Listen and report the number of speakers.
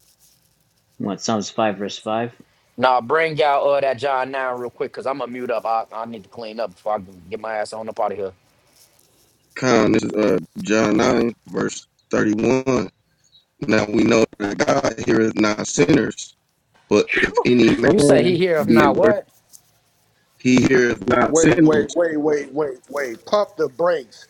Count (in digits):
4